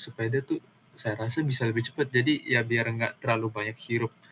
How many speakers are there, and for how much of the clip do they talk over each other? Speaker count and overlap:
one, no overlap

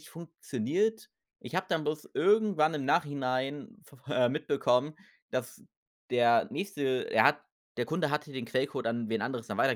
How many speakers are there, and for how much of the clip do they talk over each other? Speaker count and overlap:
one, no overlap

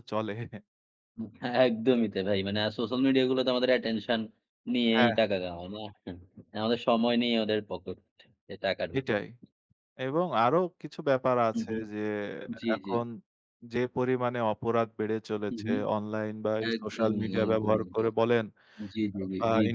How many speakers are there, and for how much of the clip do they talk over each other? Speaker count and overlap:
two, about 18%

